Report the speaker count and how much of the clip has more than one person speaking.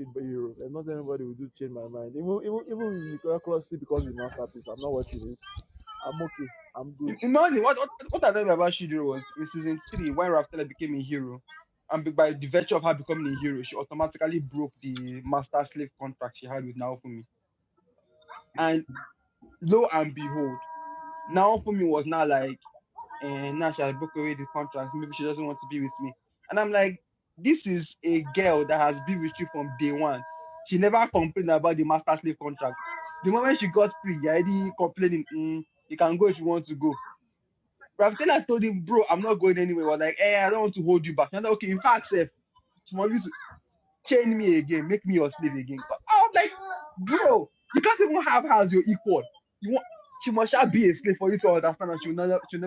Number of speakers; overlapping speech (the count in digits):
2, under 1%